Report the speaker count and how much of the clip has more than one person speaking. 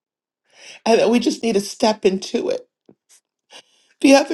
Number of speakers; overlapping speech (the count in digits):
1, no overlap